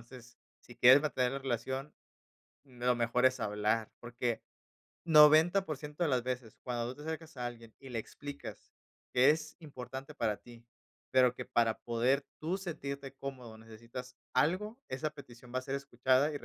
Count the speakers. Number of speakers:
1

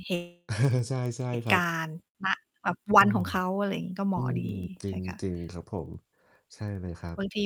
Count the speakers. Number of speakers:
2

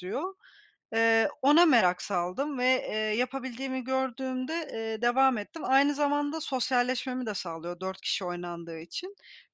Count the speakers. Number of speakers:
1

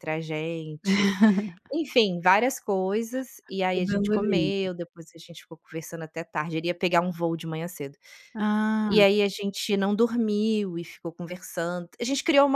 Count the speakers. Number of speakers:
2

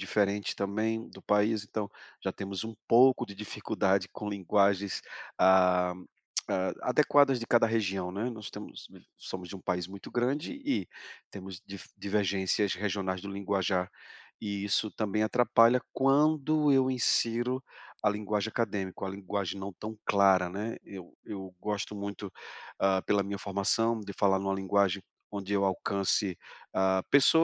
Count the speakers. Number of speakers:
1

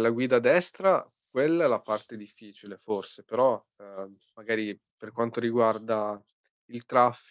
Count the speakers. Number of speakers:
1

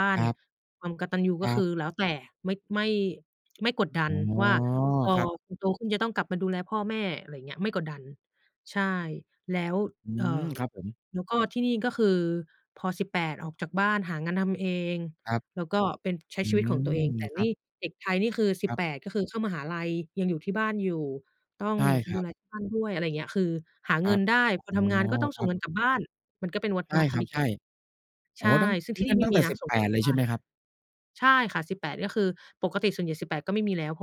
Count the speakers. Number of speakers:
2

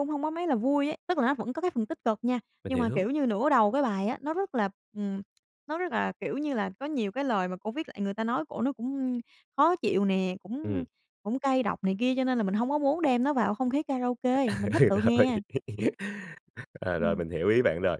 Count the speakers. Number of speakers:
2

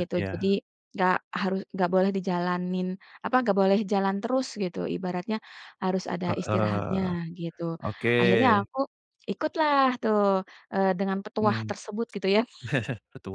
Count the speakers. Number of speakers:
2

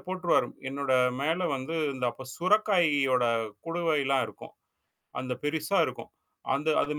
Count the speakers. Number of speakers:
1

